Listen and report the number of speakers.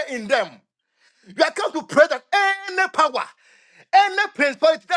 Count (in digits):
1